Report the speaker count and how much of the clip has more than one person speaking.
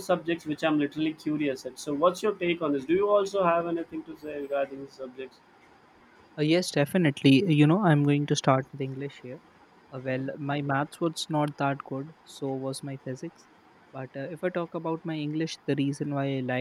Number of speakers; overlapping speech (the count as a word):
two, no overlap